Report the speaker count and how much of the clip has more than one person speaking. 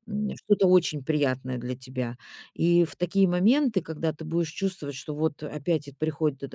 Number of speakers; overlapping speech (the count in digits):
1, no overlap